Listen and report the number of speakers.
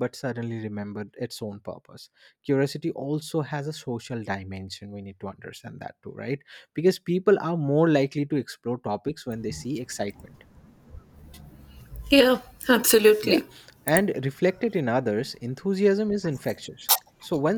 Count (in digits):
2